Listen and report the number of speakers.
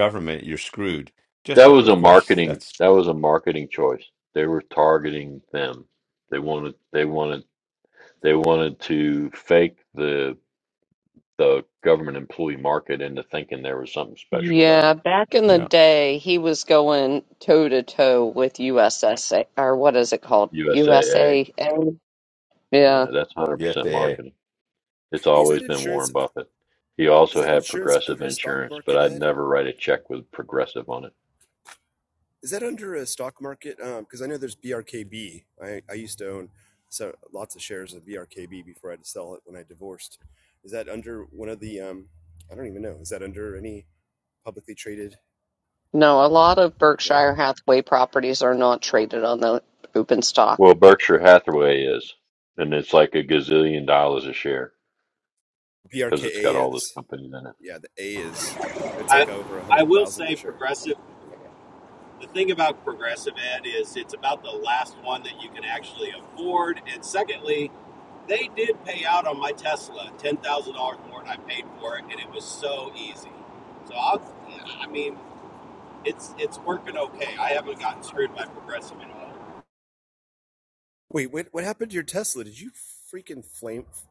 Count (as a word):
five